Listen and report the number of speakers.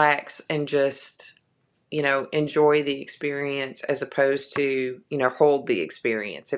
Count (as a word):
one